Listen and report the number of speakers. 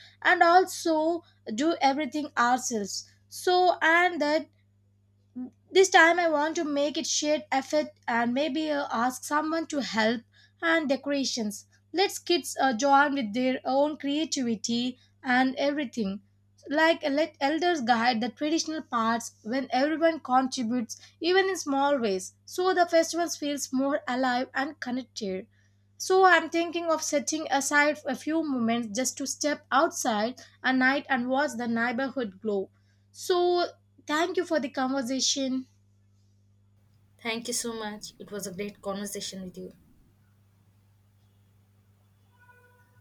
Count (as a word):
two